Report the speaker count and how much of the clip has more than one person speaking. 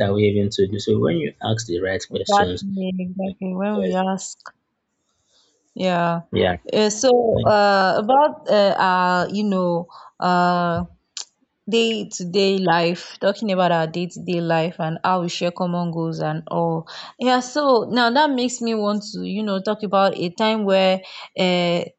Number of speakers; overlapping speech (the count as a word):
two, about 3%